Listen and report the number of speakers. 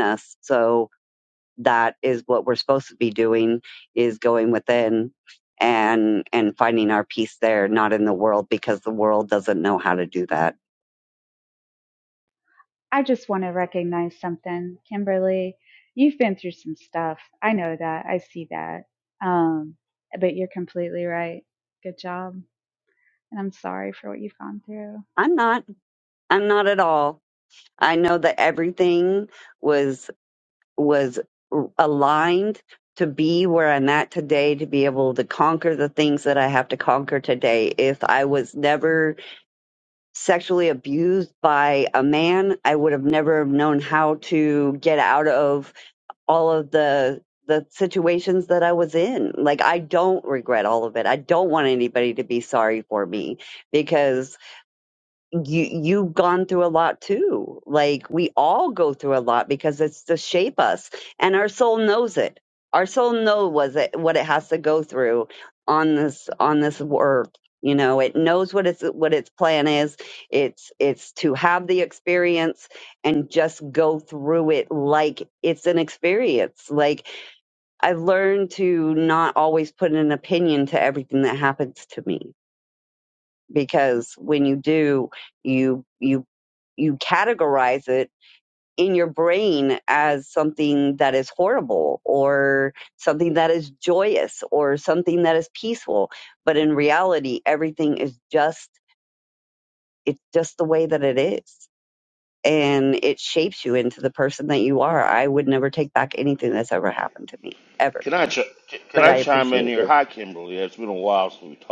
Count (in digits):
3